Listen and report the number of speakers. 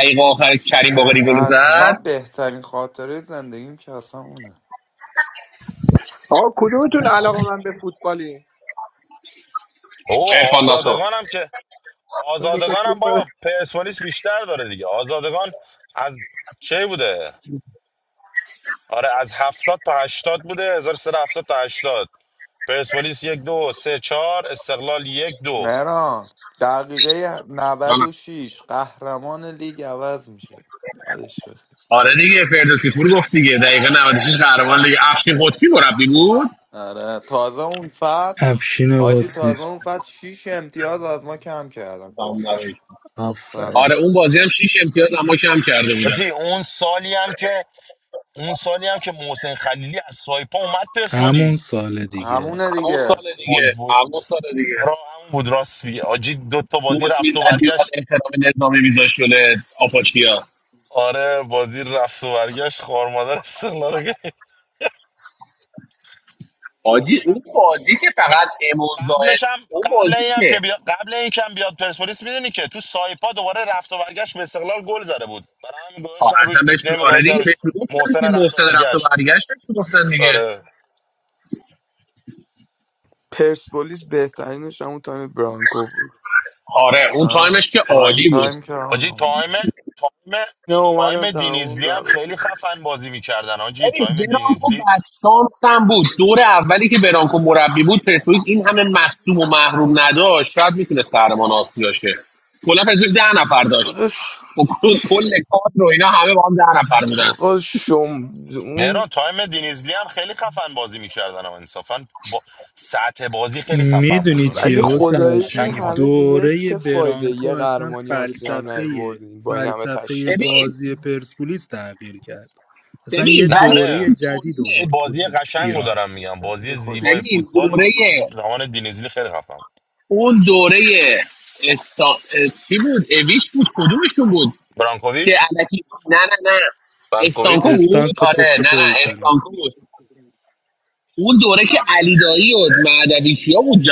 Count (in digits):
6